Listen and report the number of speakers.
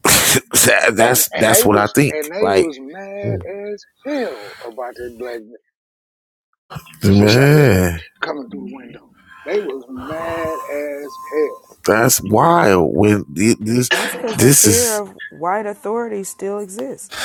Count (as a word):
three